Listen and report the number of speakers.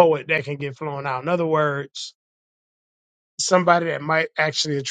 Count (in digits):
1